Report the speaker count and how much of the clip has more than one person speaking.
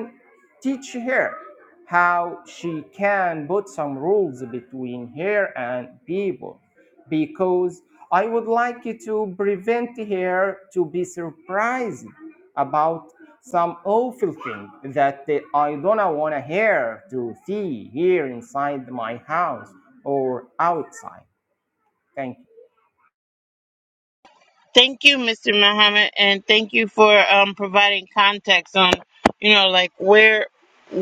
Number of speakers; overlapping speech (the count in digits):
2, no overlap